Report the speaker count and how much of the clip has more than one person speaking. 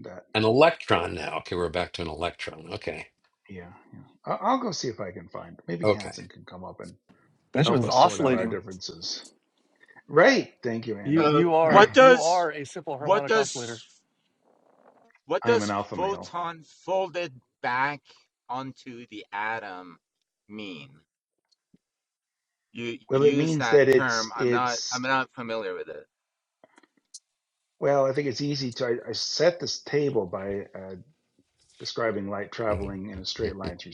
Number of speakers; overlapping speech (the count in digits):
4, about 18%